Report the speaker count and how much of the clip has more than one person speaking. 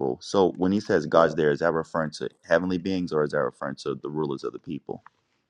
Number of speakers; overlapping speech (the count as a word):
one, no overlap